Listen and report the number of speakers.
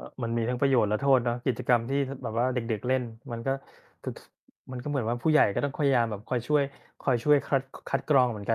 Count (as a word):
one